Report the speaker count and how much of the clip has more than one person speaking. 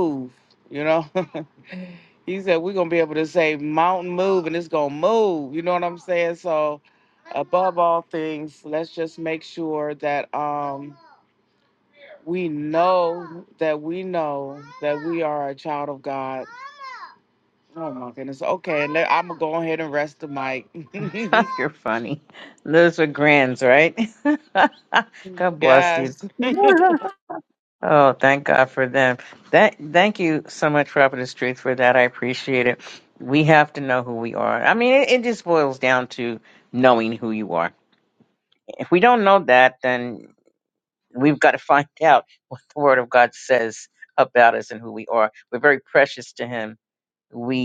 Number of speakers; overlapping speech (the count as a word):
two, about 1%